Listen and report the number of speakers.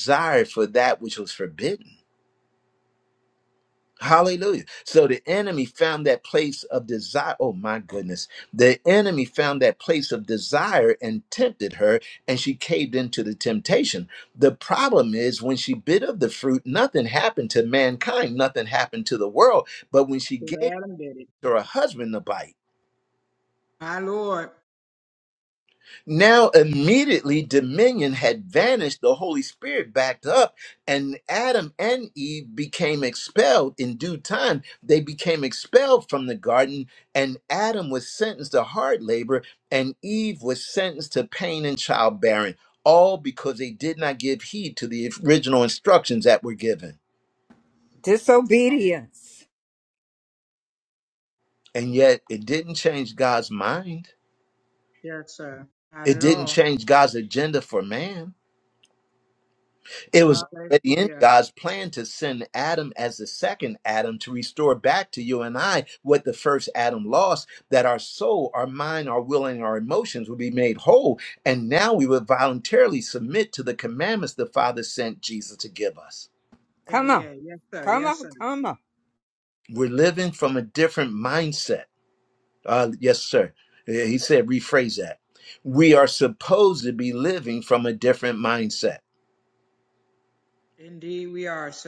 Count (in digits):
3